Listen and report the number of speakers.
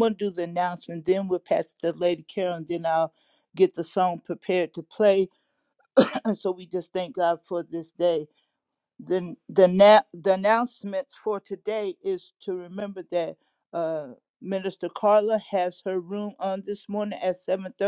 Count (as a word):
one